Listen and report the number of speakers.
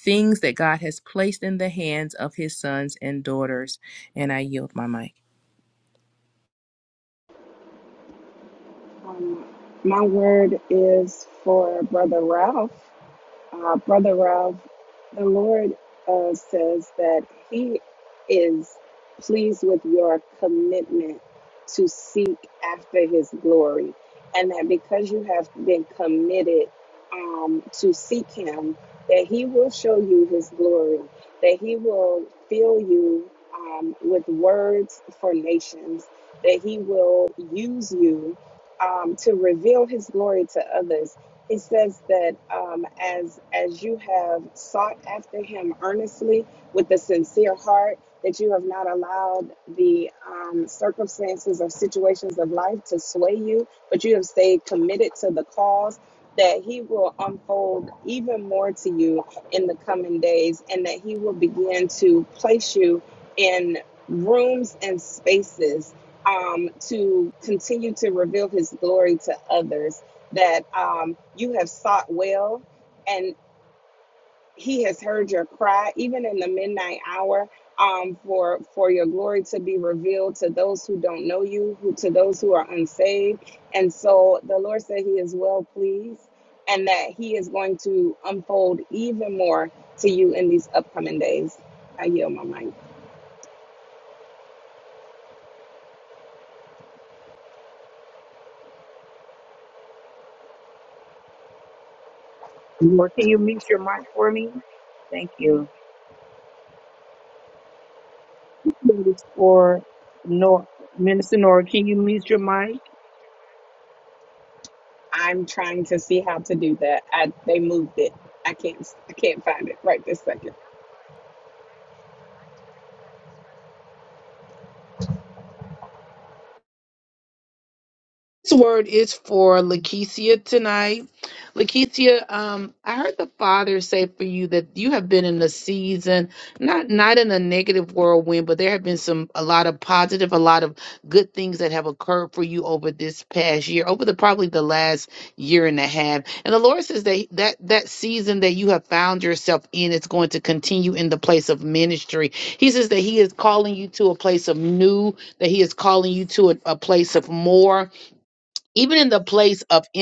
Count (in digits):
3